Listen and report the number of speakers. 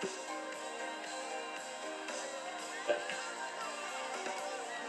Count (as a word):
zero